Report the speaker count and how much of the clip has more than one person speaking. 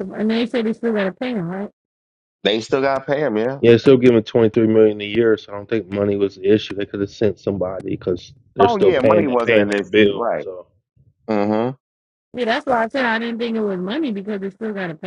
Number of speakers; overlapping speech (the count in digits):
3, about 13%